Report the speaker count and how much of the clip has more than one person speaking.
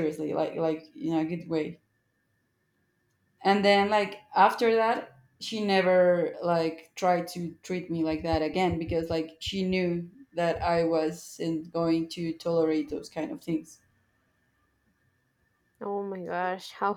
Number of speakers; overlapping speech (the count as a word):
two, no overlap